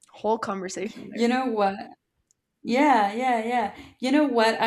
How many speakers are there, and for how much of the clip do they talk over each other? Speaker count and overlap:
2, about 2%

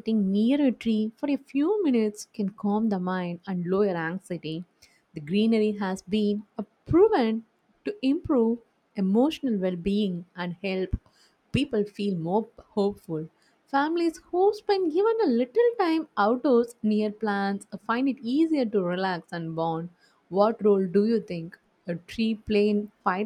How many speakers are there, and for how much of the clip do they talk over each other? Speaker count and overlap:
1, no overlap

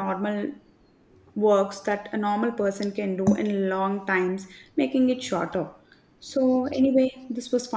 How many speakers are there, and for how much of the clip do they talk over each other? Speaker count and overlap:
1, no overlap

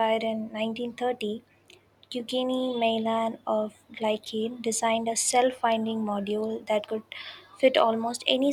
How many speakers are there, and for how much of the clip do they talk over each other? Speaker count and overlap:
1, no overlap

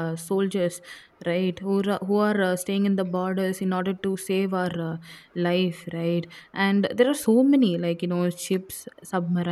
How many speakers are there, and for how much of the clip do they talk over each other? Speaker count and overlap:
1, no overlap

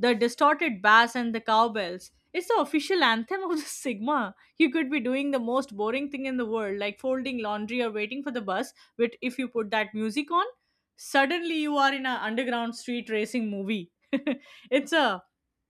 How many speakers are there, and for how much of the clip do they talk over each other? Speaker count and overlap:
1, no overlap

